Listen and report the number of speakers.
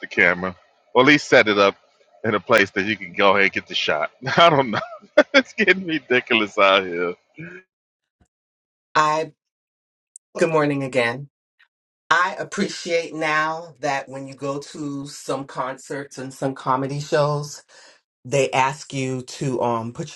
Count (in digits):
2